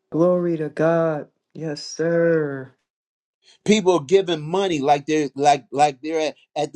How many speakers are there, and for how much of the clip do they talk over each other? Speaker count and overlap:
two, no overlap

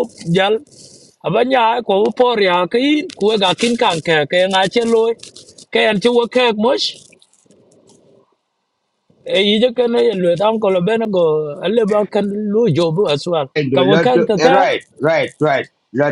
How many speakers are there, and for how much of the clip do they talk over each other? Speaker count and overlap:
two, about 5%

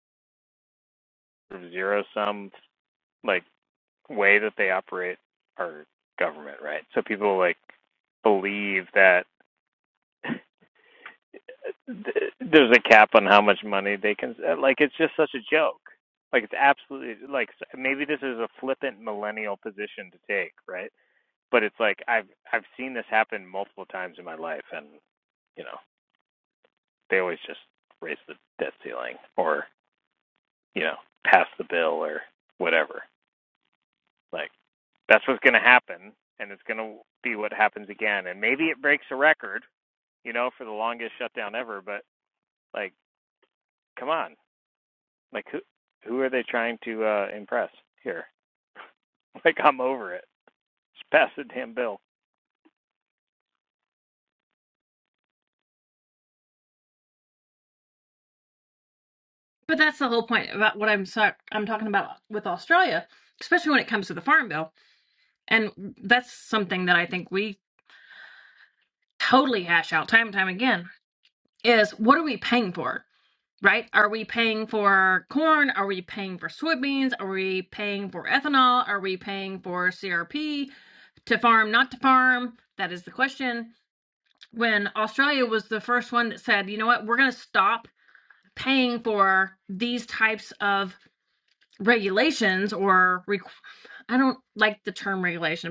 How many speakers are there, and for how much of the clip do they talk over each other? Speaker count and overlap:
two, no overlap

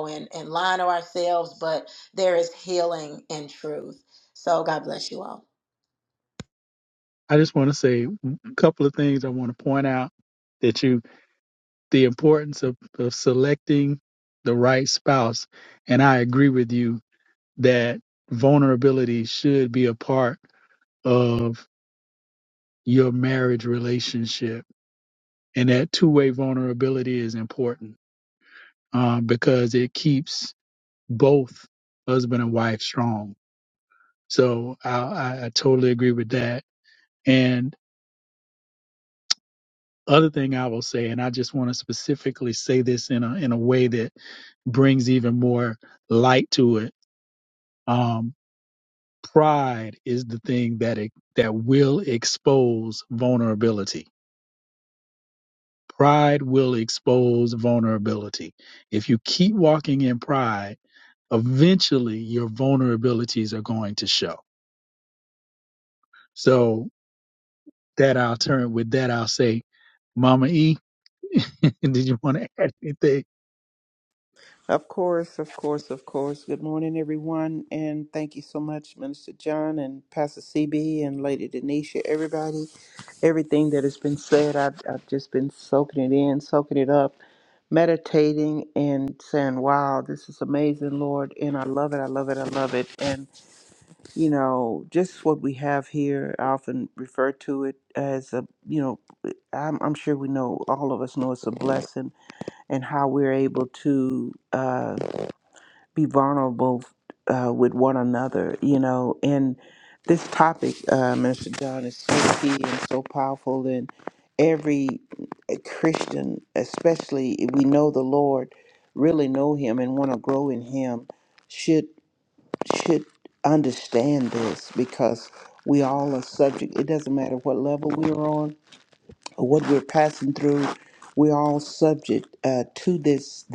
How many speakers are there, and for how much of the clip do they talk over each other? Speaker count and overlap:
three, no overlap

